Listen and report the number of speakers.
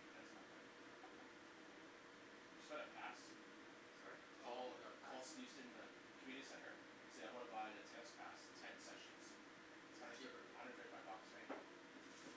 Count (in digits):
2